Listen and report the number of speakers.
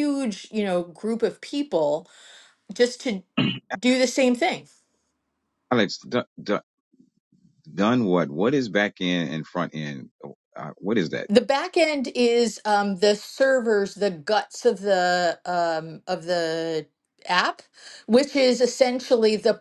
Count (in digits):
2